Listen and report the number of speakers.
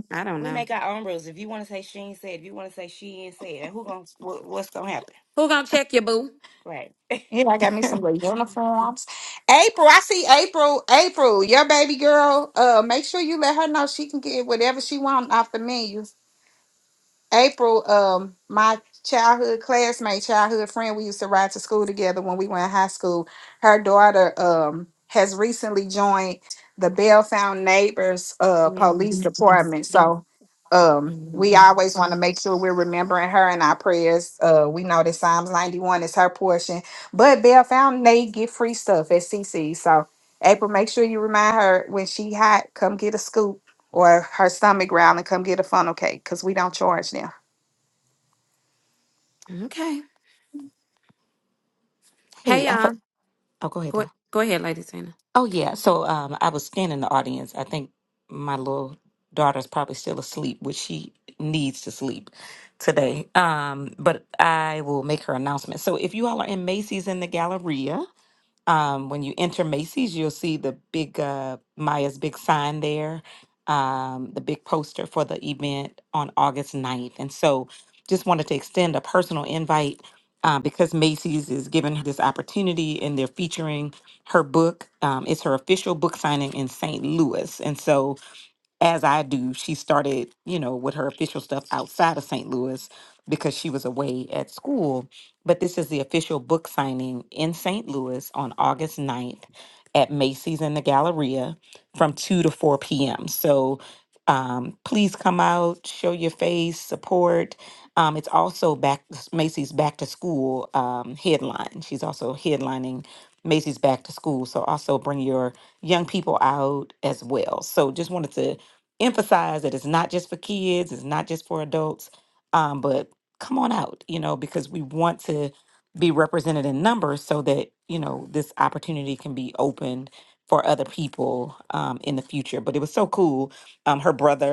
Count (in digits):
4